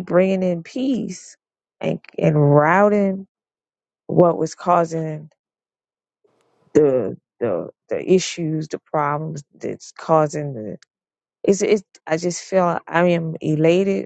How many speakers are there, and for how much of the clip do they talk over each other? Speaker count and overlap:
one, no overlap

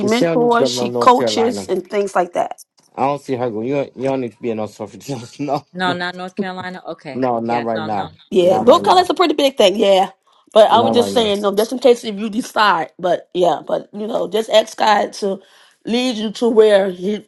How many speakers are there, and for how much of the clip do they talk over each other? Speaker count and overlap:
three, about 25%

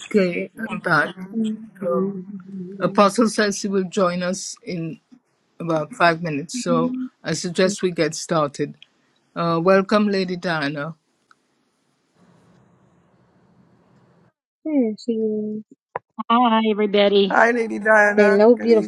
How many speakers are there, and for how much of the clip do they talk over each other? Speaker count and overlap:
four, about 6%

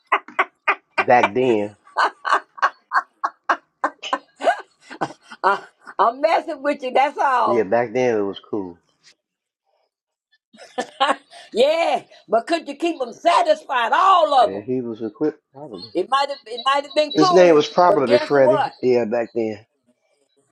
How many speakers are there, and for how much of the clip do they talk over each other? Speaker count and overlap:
two, about 10%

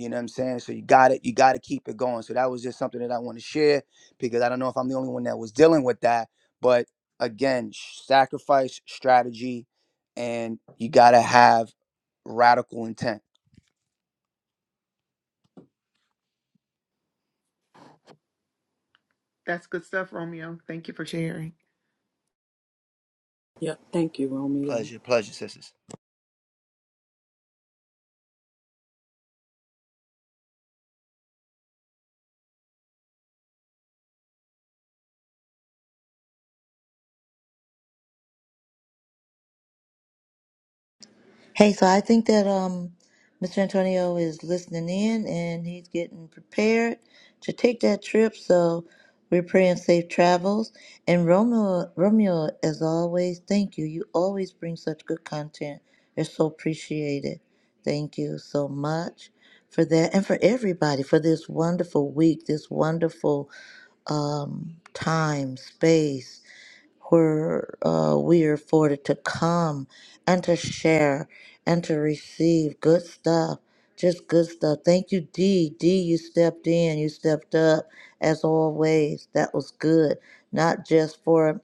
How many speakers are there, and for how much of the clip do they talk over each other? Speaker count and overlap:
four, under 1%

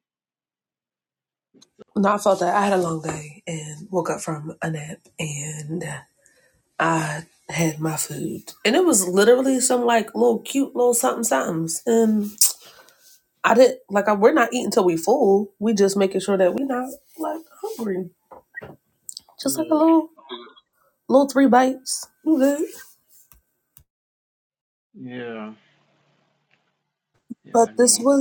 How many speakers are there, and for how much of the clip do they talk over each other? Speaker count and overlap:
two, about 4%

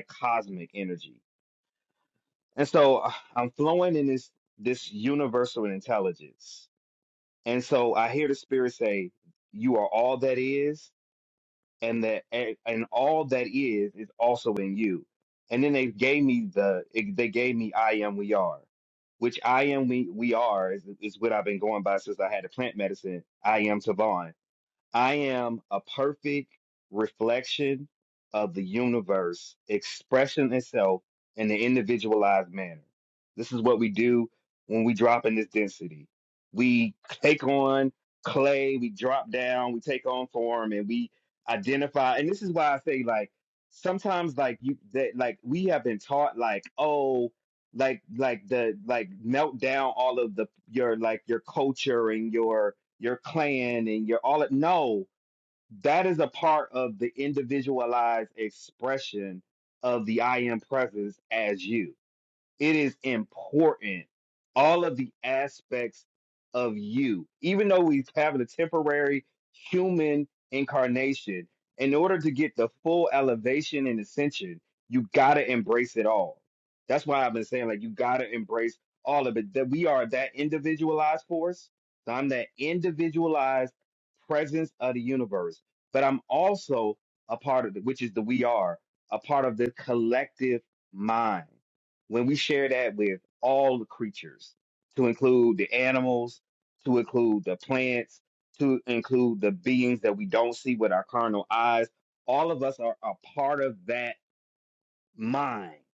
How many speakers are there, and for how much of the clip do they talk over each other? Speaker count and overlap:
one, no overlap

